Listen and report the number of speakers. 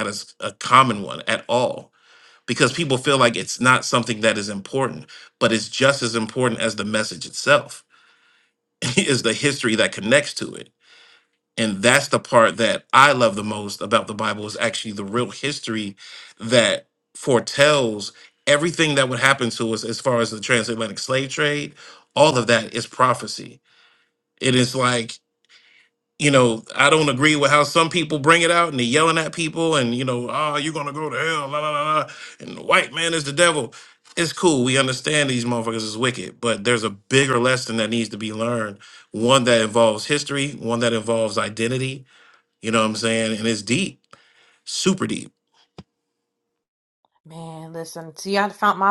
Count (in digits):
2